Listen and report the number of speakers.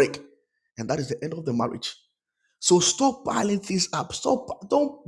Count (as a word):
one